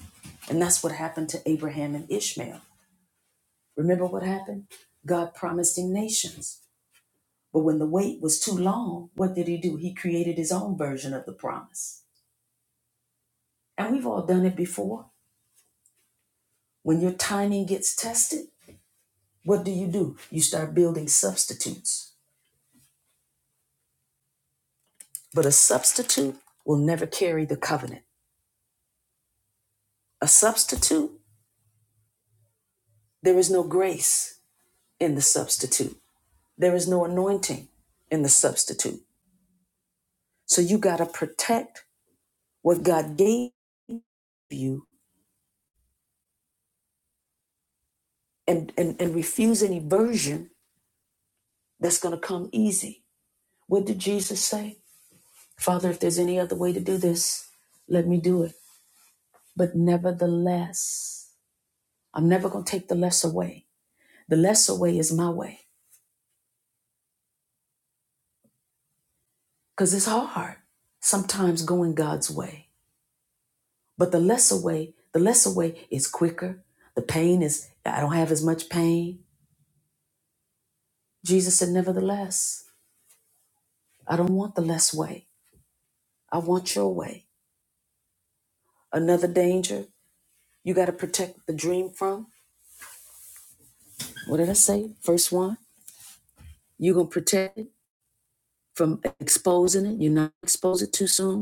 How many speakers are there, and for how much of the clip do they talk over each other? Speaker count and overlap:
one, no overlap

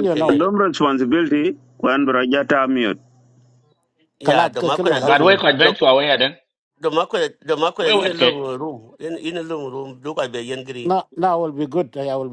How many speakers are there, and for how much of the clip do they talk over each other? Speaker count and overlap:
four, about 19%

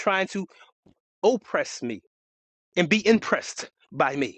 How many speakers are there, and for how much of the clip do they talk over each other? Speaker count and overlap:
one, no overlap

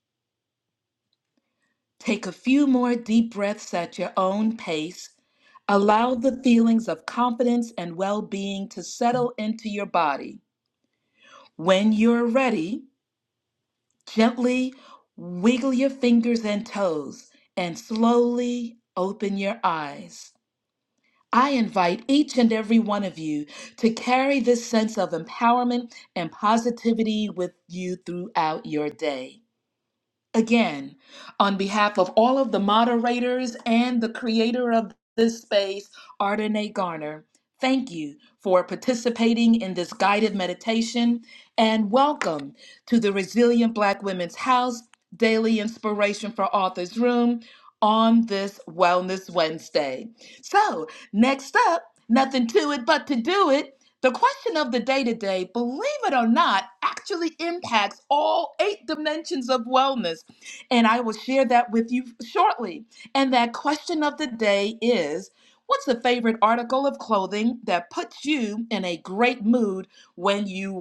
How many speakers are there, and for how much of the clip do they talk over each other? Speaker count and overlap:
one, no overlap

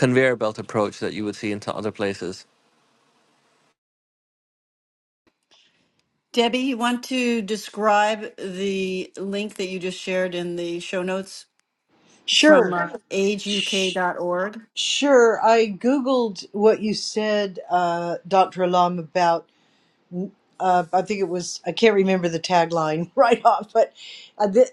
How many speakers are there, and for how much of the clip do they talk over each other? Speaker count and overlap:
three, about 3%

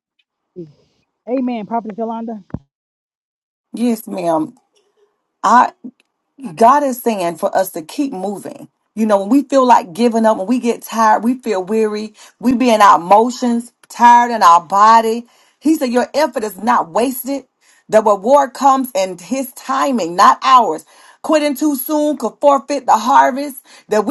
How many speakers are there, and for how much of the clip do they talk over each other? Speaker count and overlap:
two, no overlap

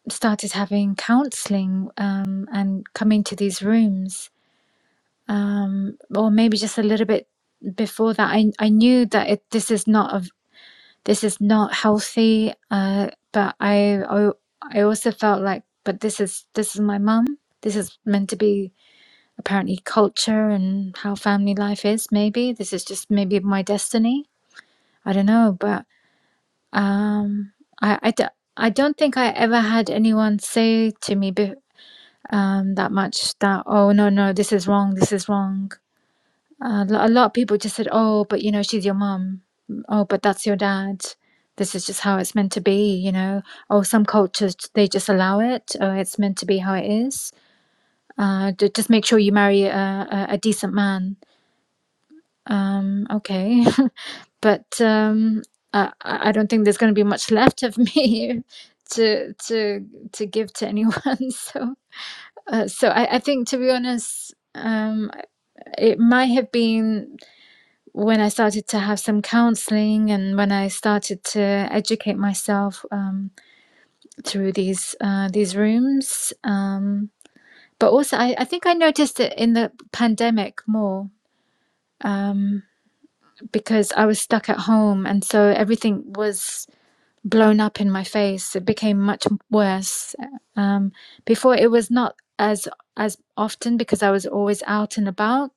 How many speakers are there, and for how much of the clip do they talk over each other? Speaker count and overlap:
one, no overlap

